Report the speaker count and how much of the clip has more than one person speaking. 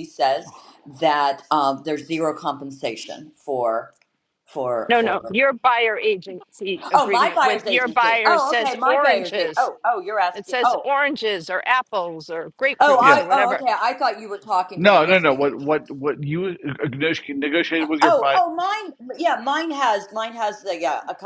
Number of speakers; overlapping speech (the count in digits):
3, about 26%